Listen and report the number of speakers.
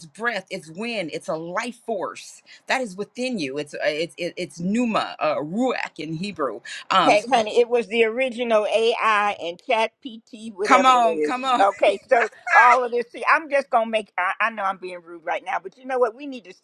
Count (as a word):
two